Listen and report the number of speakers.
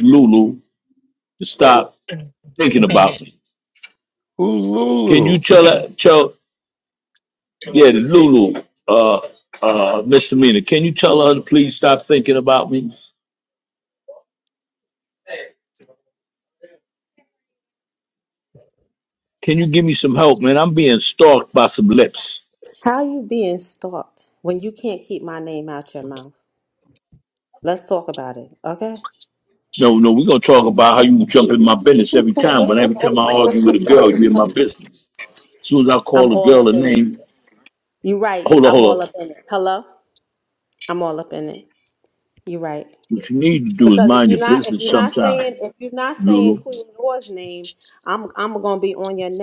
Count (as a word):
three